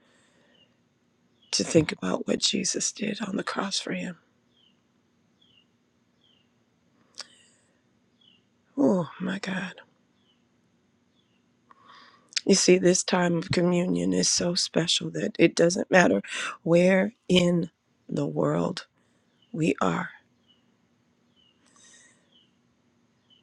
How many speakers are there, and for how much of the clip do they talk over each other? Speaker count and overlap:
one, no overlap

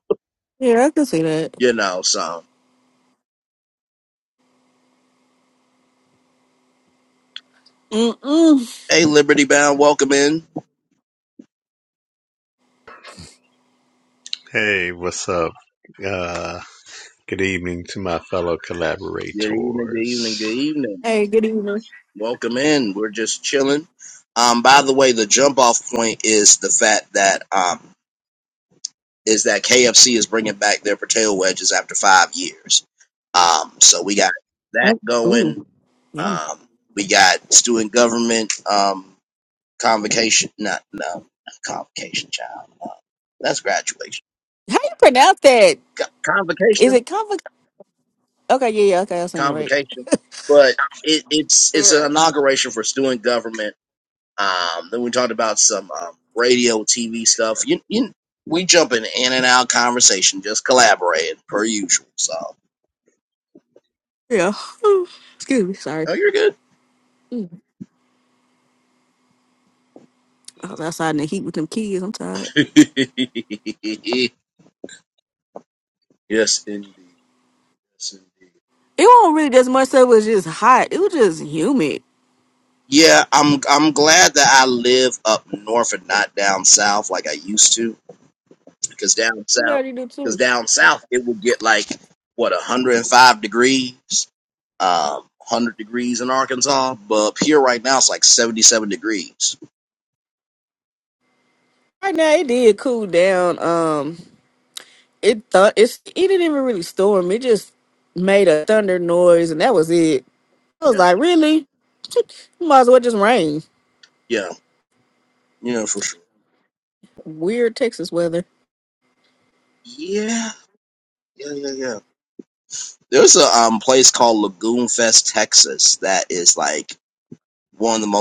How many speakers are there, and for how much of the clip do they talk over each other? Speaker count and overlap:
three, about 2%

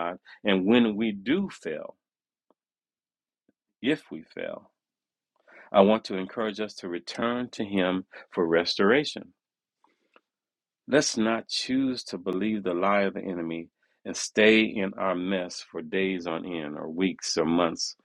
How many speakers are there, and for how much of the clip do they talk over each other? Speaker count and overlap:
one, no overlap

